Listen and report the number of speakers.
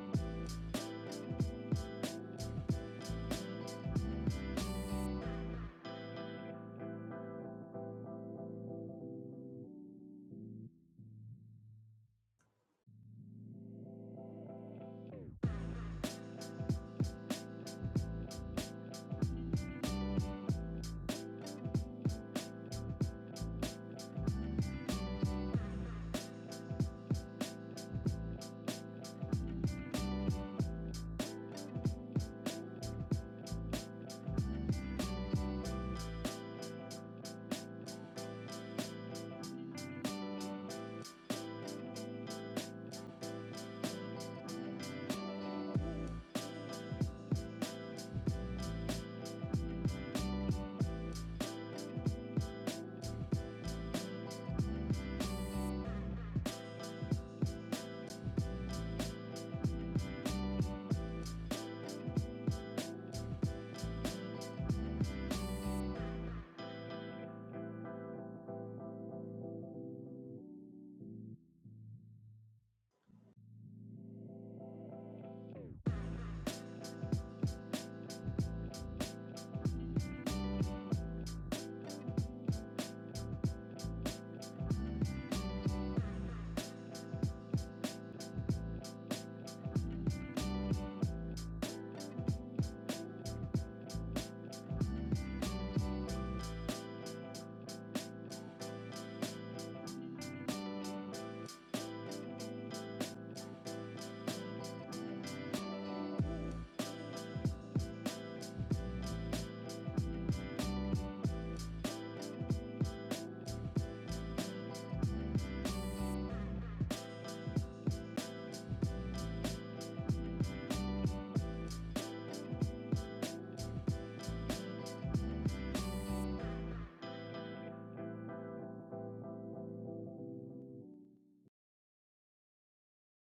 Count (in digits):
0